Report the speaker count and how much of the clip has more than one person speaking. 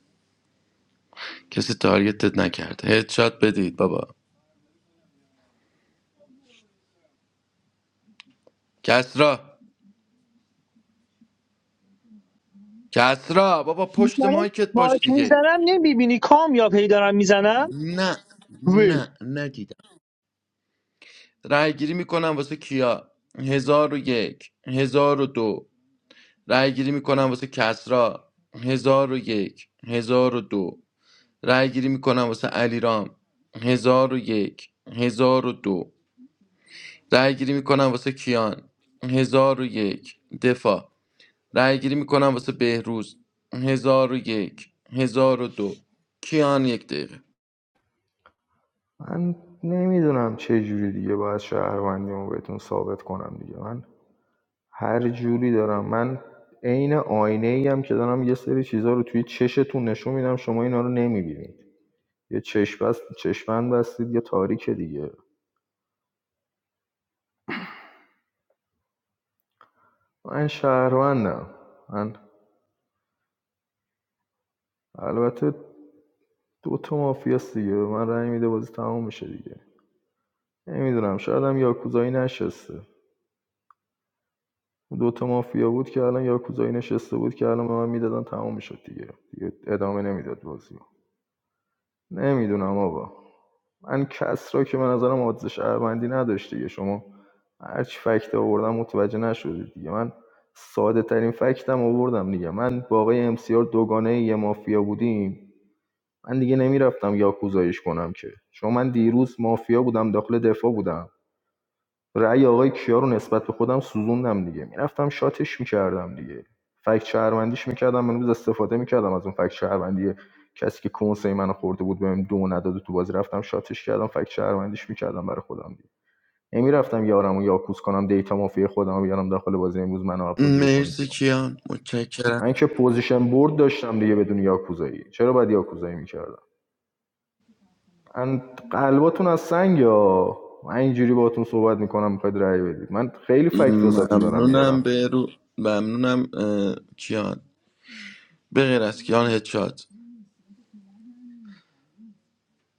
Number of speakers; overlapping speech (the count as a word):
three, about 2%